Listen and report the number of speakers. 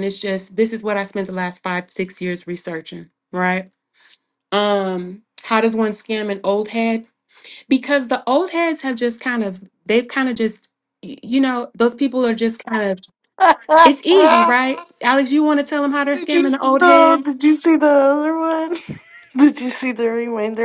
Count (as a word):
two